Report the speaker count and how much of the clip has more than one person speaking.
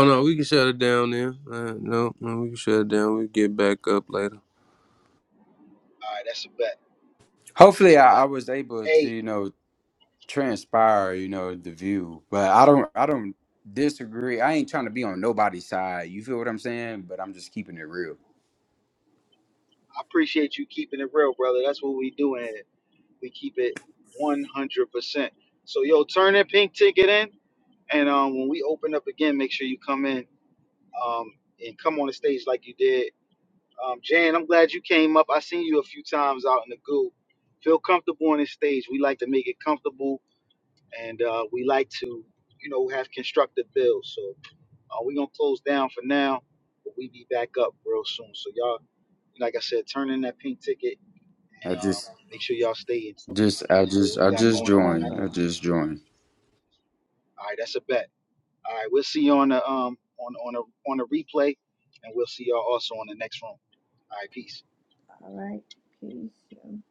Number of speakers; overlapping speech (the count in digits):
4, about 4%